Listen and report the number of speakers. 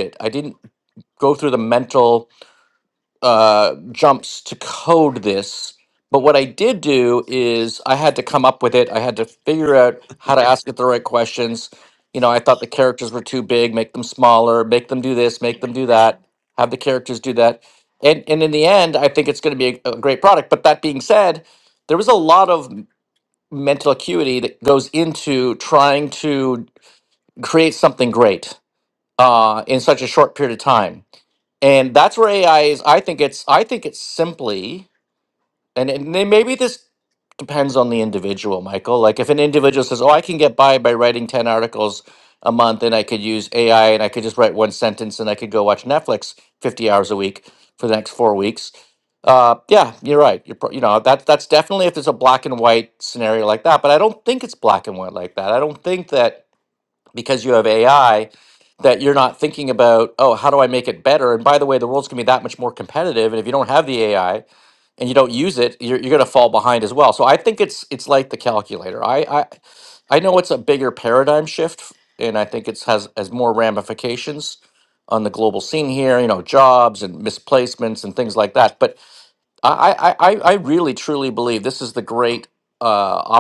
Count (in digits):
1